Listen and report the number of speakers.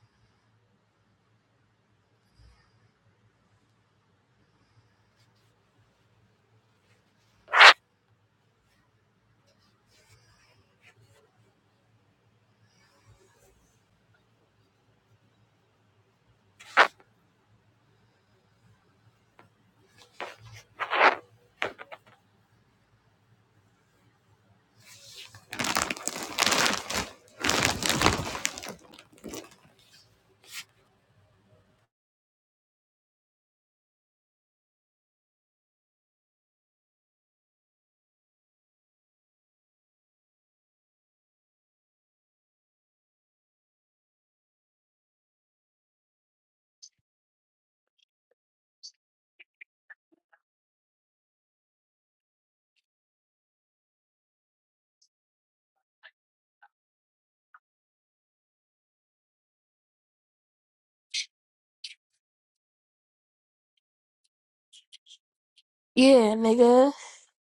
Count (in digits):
1